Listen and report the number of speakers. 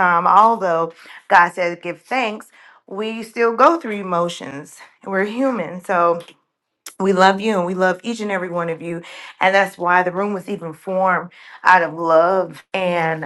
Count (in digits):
1